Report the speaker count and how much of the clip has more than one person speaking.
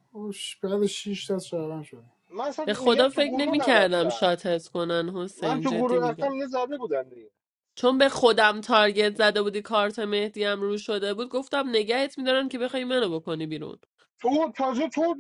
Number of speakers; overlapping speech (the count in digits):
3, about 17%